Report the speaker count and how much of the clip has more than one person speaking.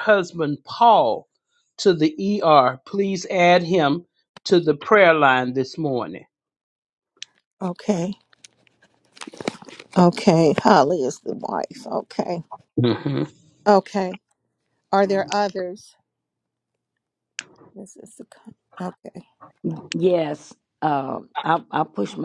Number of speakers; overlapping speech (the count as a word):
three, no overlap